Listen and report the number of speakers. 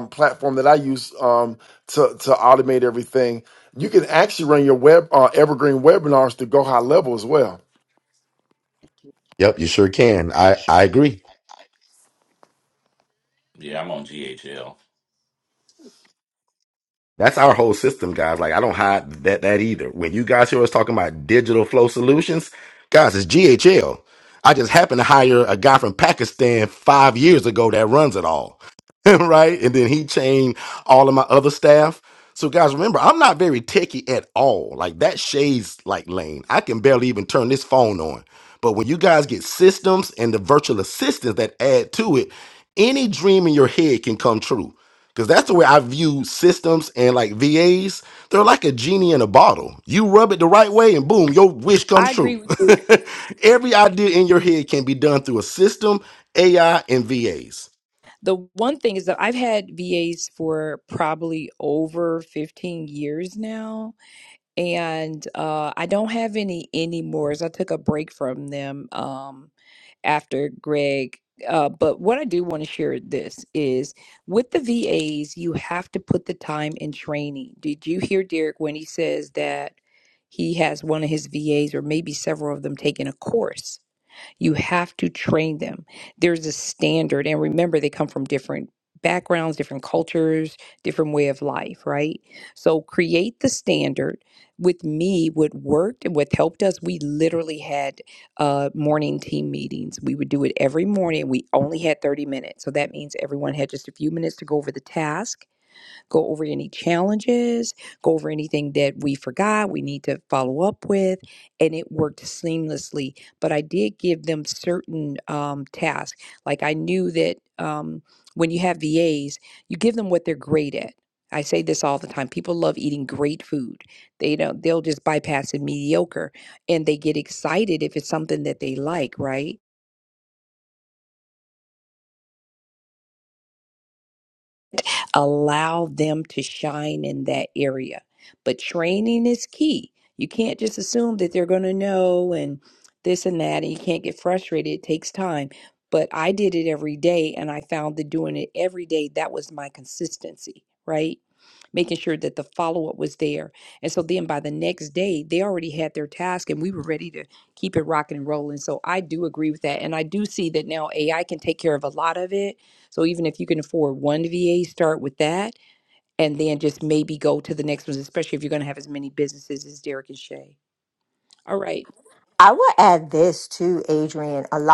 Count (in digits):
5